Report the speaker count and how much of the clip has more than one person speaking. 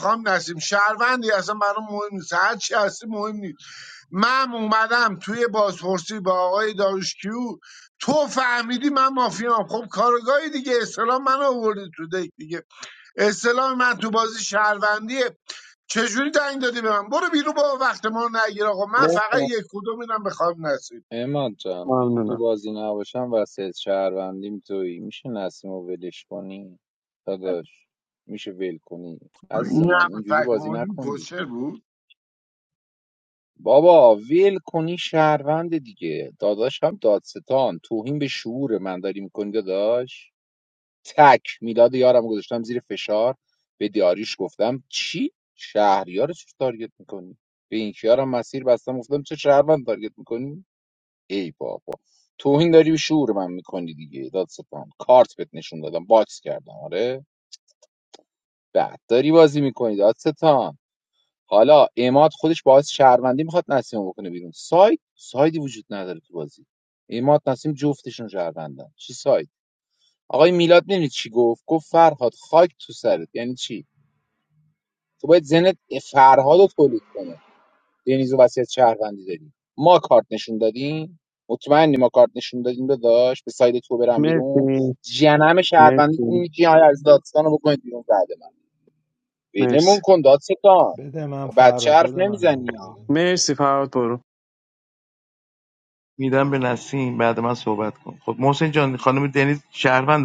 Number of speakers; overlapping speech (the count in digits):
5, about 5%